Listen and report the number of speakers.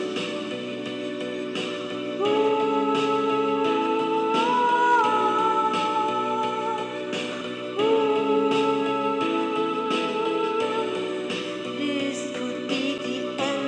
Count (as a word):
one